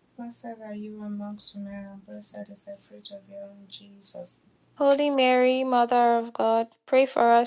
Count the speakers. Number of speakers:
2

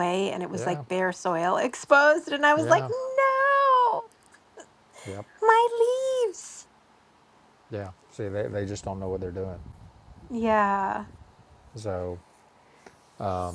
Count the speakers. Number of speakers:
2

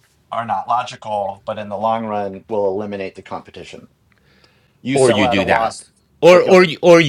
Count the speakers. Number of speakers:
2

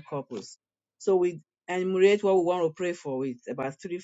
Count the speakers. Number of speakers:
1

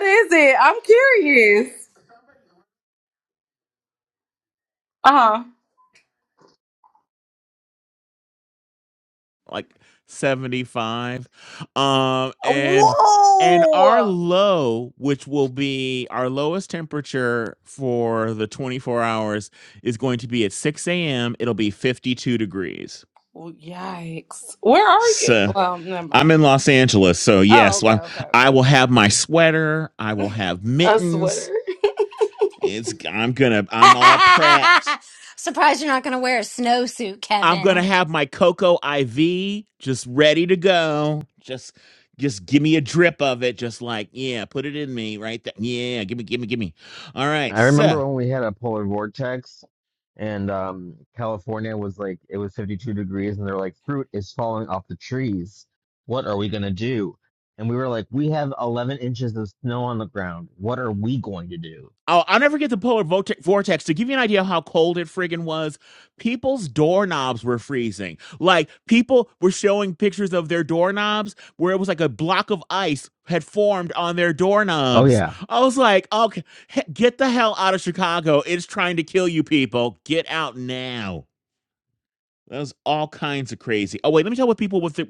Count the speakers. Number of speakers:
4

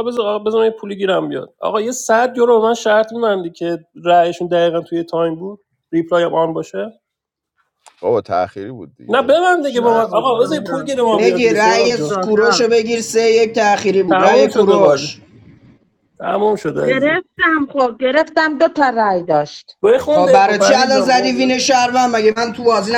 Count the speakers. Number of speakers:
4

